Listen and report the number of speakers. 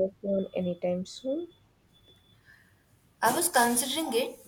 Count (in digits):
2